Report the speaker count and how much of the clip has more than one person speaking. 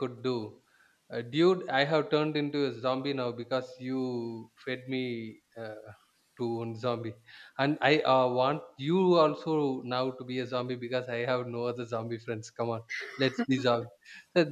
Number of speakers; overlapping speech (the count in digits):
1, no overlap